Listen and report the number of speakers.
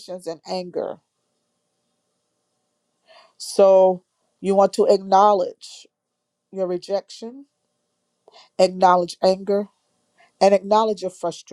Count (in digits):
1